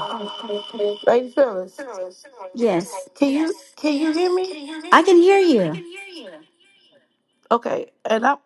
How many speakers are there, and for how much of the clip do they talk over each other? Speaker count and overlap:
2, no overlap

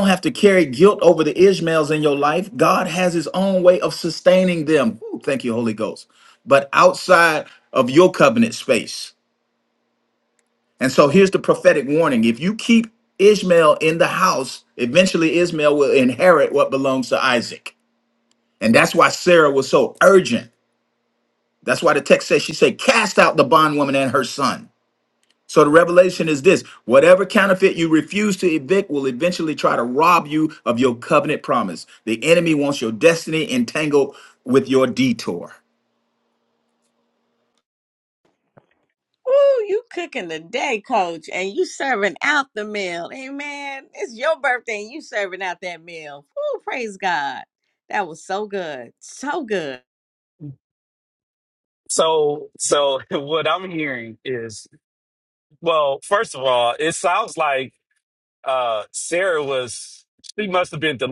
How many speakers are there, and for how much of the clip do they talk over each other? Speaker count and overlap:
3, no overlap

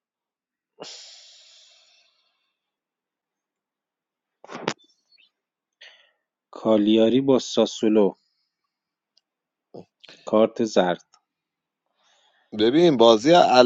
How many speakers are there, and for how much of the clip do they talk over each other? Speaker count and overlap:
2, no overlap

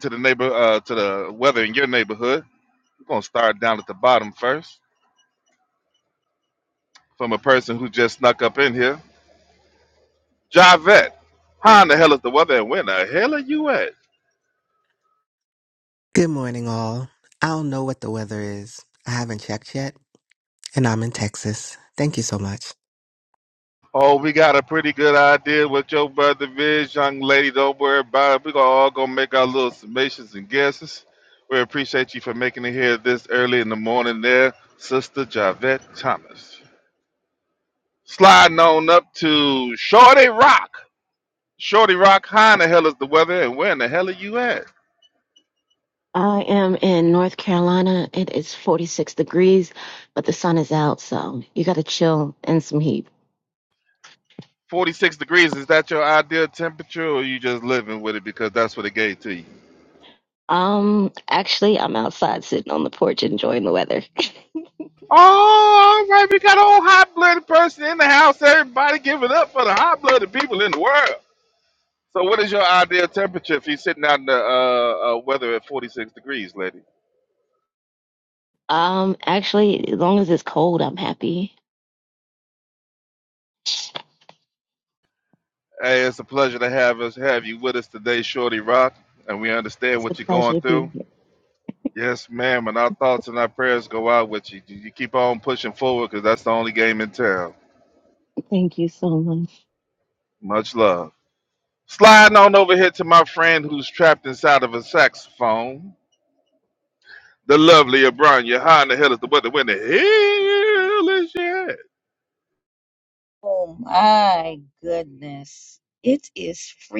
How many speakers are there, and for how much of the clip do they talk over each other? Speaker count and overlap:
4, about 1%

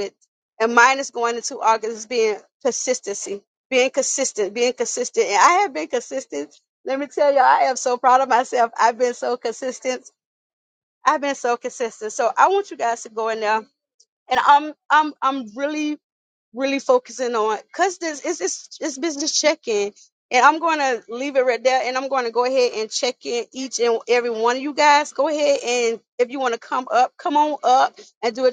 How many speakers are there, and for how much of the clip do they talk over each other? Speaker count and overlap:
1, no overlap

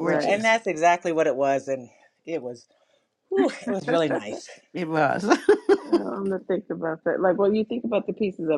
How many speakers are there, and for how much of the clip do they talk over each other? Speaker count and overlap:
3, about 5%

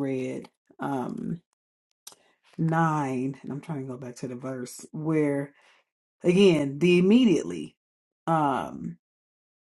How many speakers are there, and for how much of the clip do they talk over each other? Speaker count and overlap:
1, no overlap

